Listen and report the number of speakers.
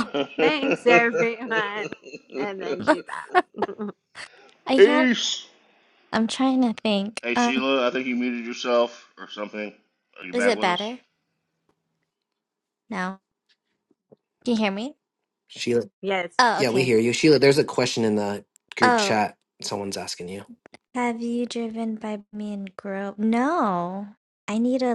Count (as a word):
four